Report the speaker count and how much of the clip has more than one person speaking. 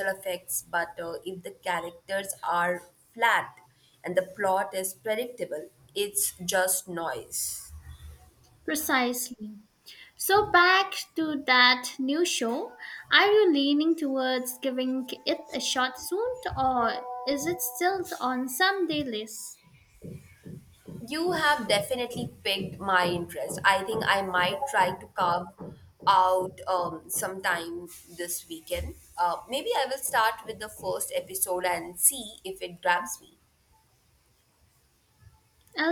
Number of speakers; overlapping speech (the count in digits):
2, no overlap